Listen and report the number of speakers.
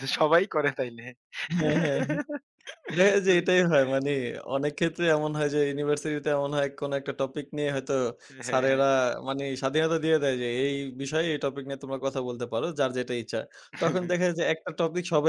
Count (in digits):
2